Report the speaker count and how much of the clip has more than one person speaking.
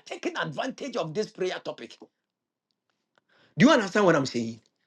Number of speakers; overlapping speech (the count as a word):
one, no overlap